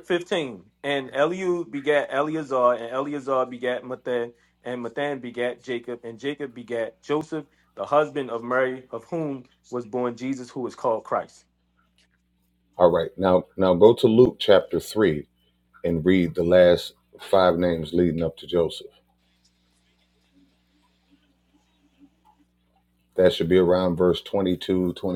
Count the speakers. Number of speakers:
two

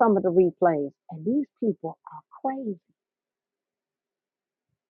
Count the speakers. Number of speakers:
one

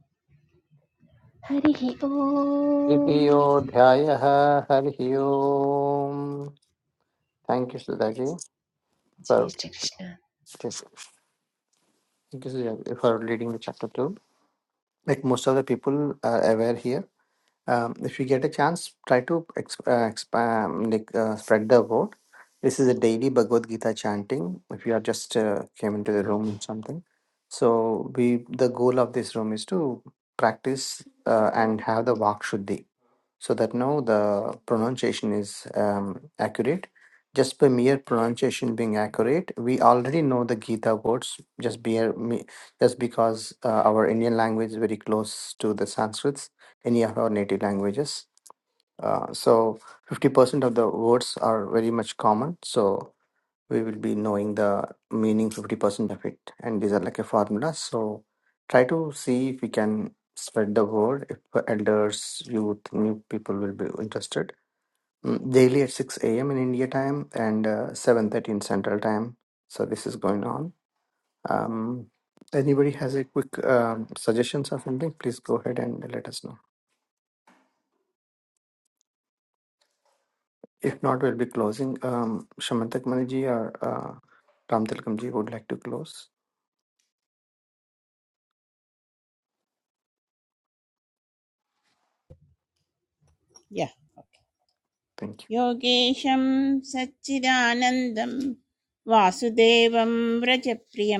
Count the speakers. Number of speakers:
three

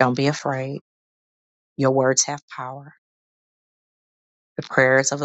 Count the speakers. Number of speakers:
one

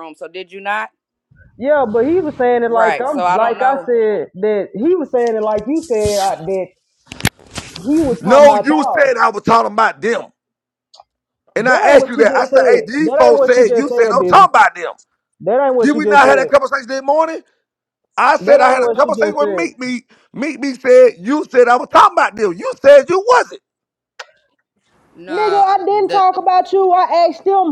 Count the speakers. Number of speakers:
three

